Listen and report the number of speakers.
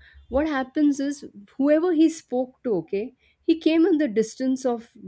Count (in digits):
1